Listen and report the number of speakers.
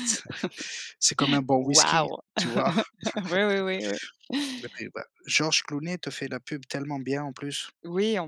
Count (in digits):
2